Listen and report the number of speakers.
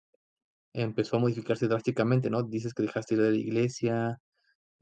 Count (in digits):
1